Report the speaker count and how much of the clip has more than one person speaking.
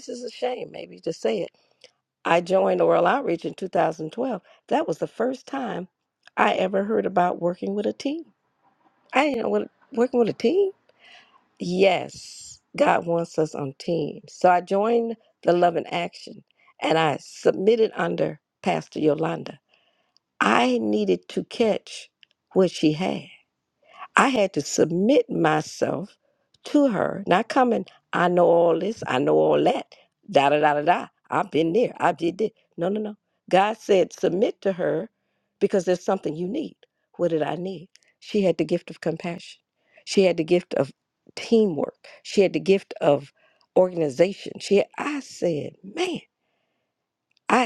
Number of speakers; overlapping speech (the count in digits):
1, no overlap